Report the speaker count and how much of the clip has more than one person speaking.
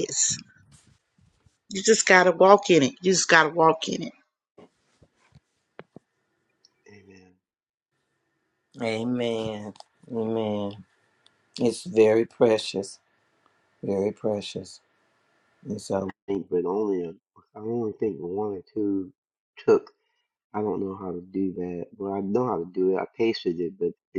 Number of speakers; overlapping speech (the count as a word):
three, no overlap